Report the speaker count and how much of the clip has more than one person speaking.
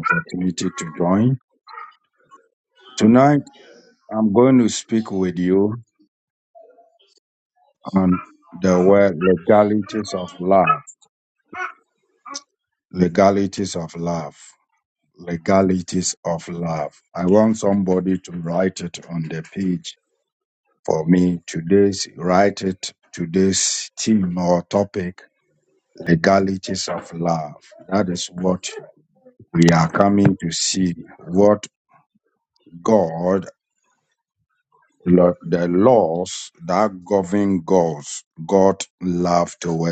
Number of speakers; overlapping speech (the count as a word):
one, no overlap